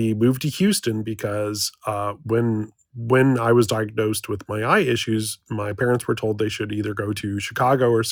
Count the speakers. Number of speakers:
1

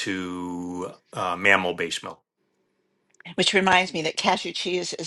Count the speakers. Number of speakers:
2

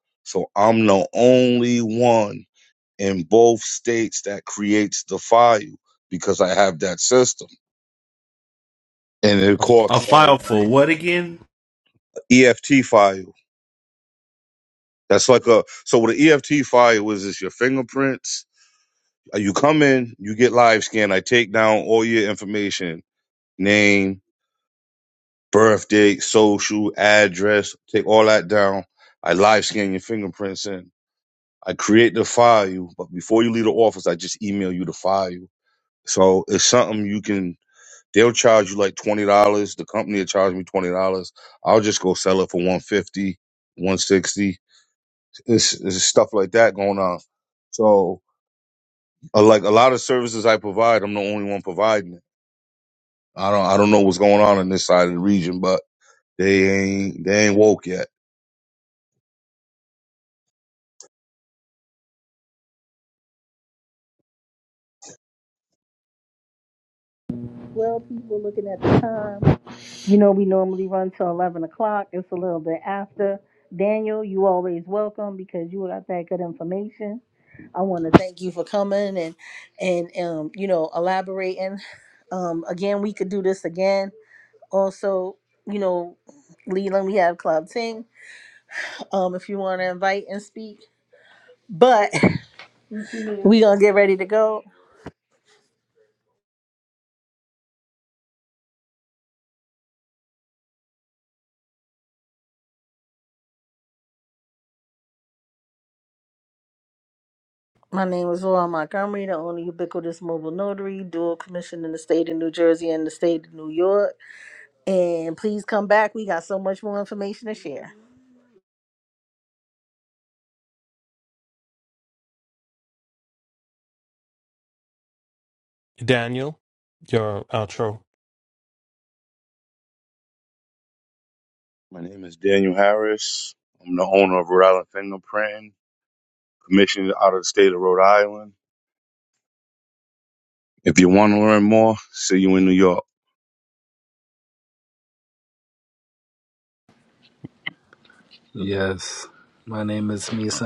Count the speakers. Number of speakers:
5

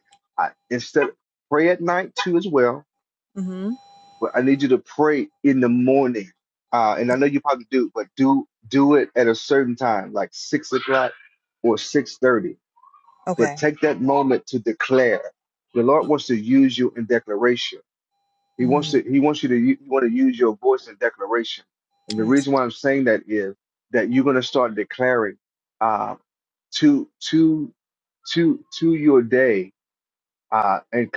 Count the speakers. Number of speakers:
2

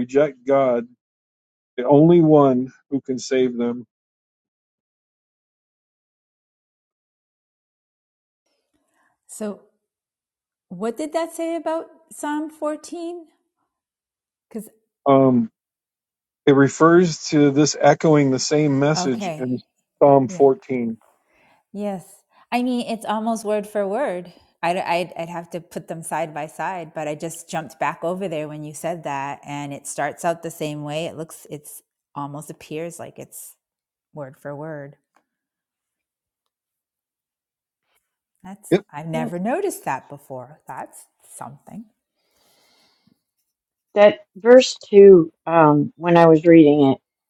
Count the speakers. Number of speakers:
3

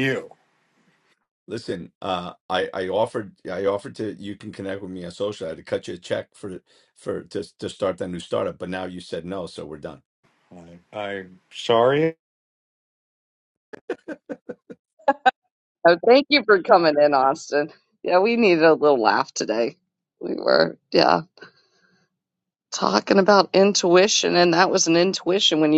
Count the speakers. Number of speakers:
3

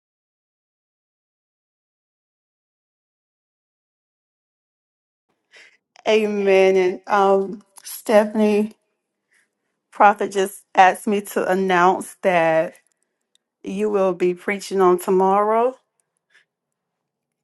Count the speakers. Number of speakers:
1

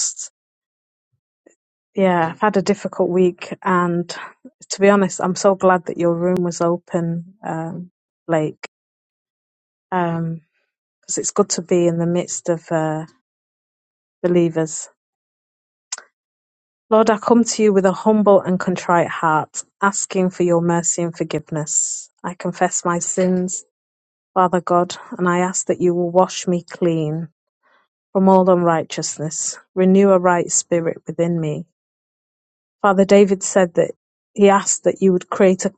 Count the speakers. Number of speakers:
1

